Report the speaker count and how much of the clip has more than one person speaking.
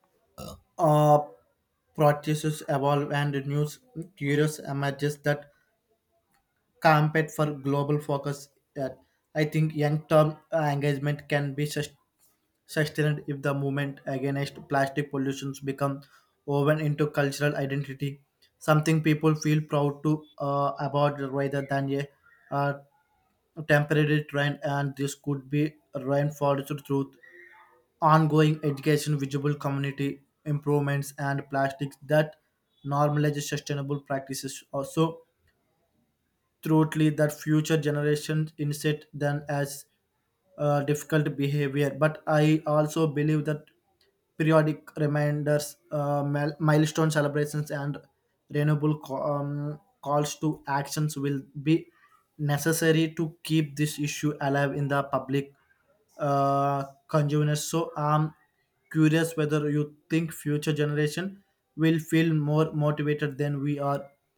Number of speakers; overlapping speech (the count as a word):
one, no overlap